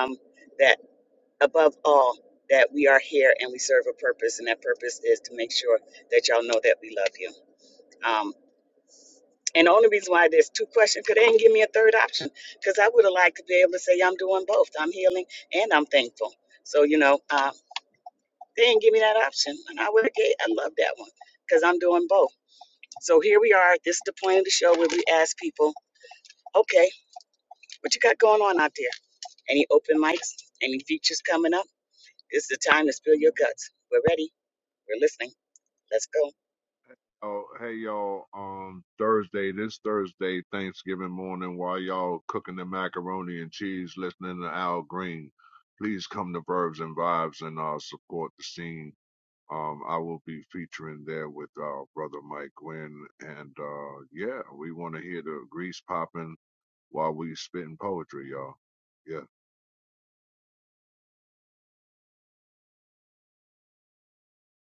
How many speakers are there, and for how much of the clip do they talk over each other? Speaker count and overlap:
2, no overlap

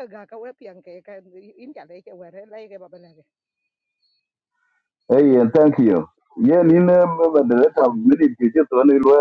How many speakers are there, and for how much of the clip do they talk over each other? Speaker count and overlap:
2, no overlap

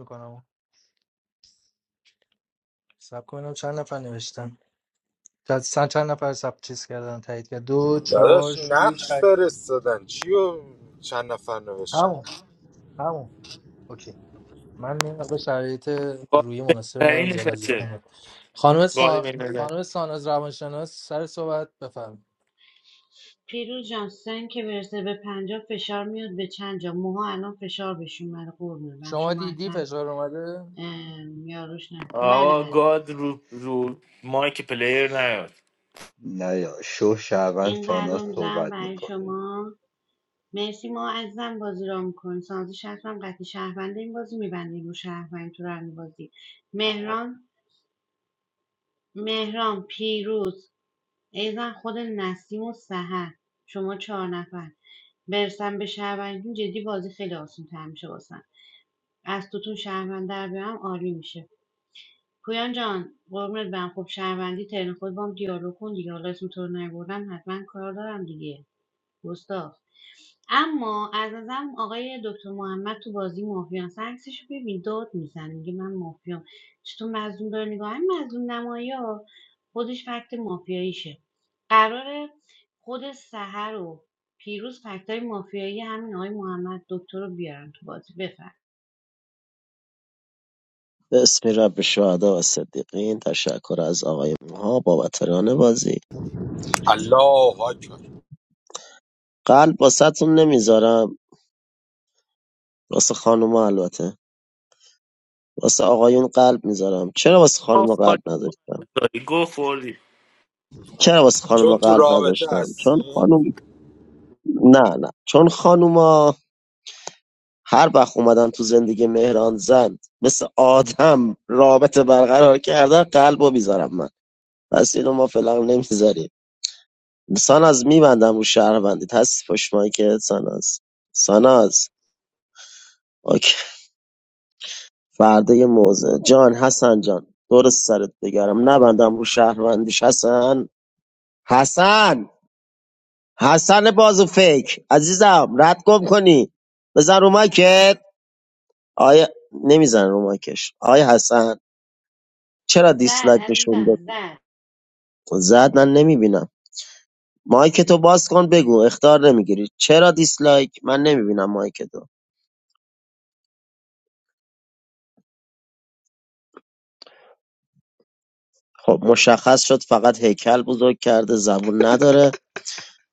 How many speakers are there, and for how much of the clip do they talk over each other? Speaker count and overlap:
6, about 5%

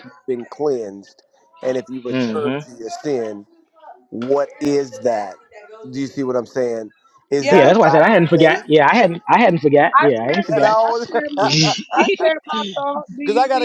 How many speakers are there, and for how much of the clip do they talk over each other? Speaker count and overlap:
3, about 25%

